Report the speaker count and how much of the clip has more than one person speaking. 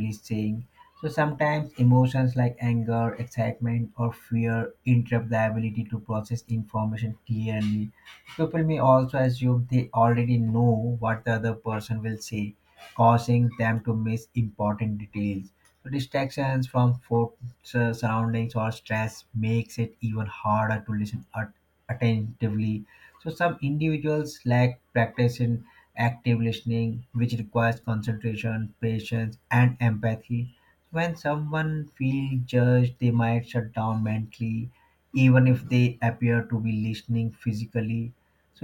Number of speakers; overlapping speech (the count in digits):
1, no overlap